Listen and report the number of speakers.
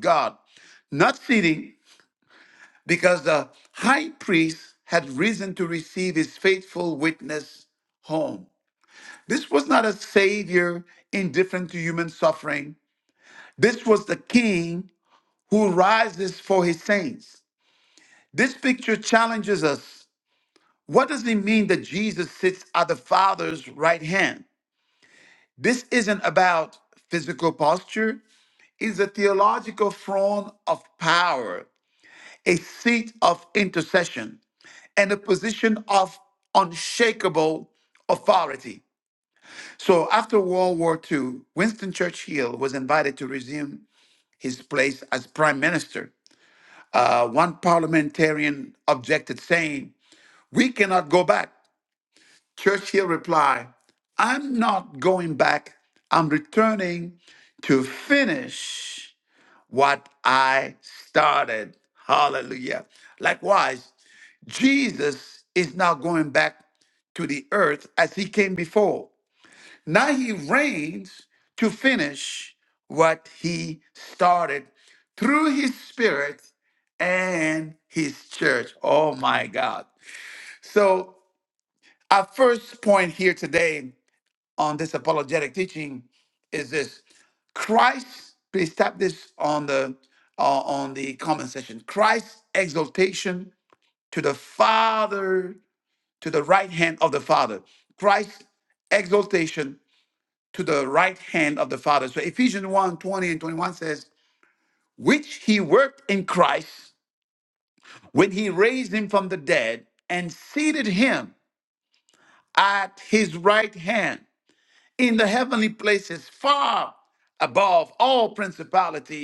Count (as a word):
one